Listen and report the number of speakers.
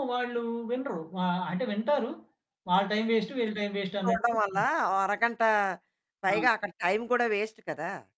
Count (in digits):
2